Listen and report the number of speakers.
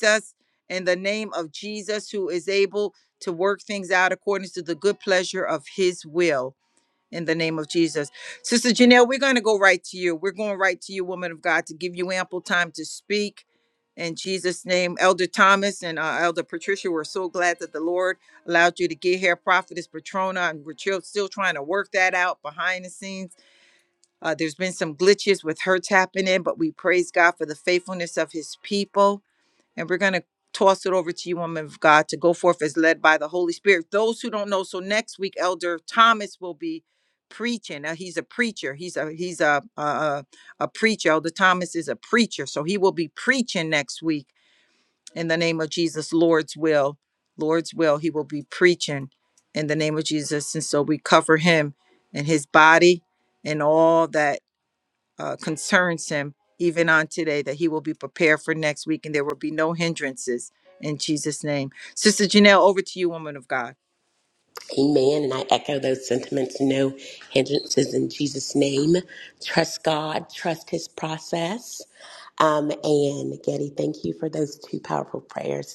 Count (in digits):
2